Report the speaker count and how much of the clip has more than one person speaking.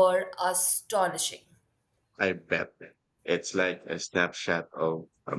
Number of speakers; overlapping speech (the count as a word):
two, no overlap